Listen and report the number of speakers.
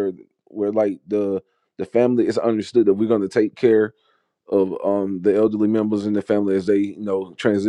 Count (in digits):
1